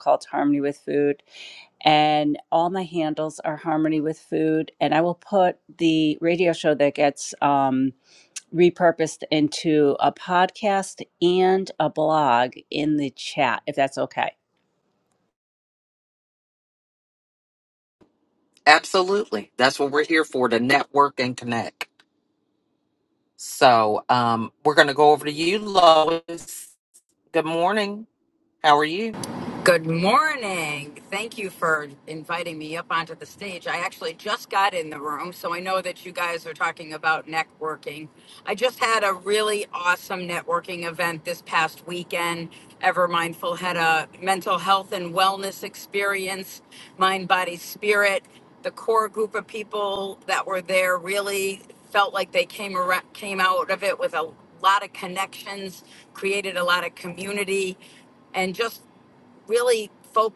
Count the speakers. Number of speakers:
three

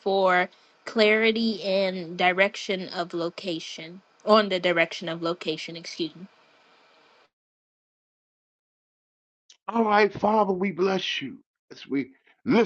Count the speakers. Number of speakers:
two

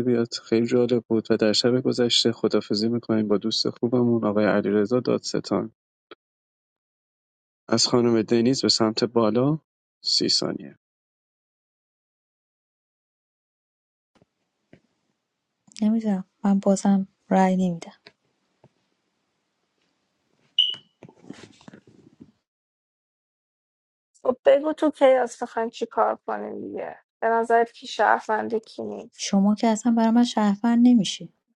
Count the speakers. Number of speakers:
three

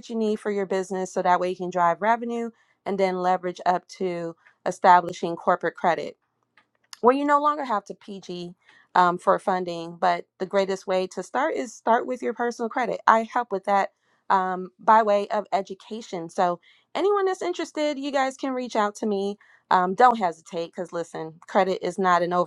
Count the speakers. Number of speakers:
one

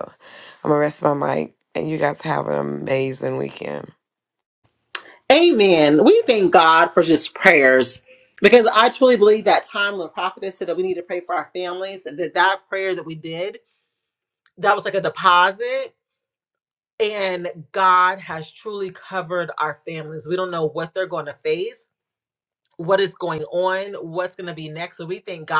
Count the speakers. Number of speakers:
two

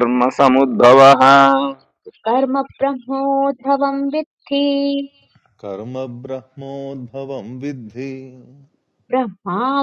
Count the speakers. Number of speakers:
three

